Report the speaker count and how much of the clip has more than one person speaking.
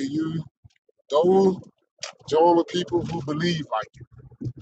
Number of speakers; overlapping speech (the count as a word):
one, no overlap